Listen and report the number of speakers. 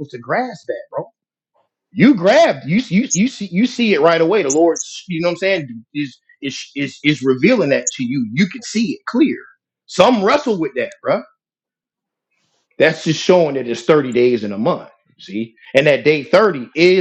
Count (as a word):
one